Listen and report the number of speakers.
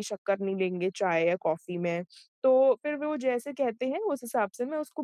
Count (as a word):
one